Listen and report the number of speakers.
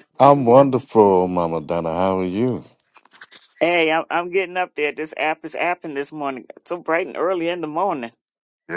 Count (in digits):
2